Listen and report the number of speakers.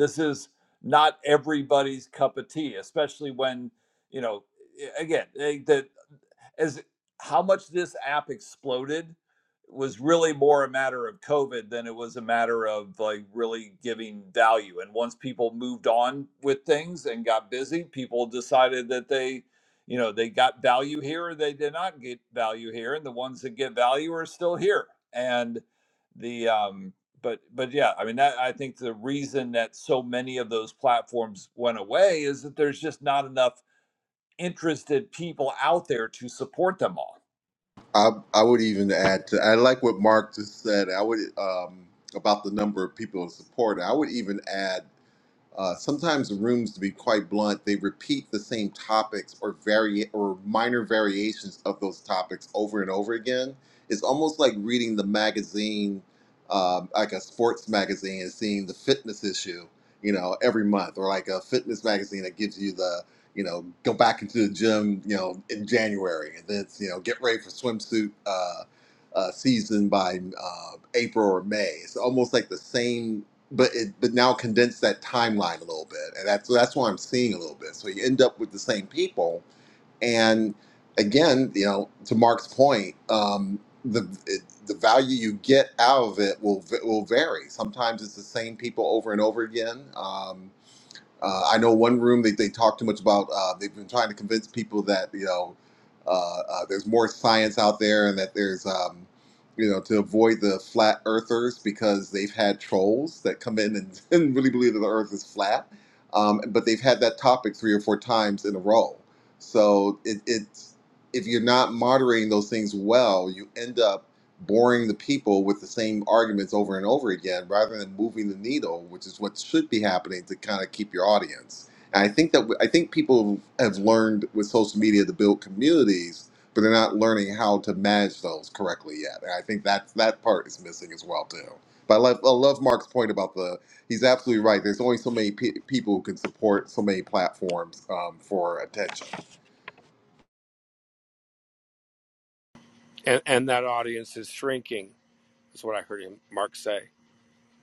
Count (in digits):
3